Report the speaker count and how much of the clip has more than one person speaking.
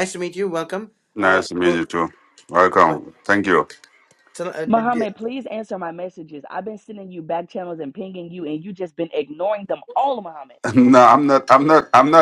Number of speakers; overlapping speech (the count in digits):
3, about 10%